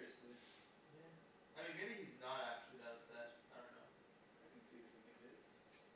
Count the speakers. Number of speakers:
2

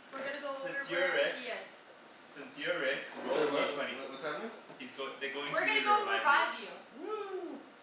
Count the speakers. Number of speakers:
3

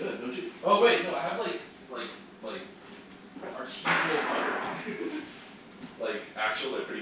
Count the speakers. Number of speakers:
1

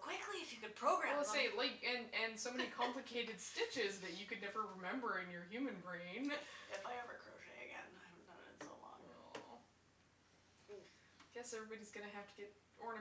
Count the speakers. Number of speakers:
2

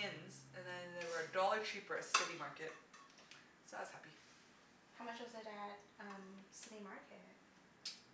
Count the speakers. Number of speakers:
2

